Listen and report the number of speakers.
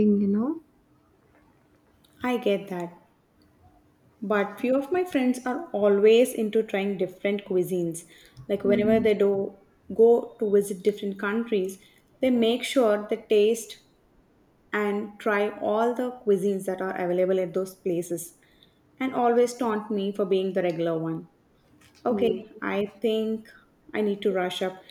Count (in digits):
2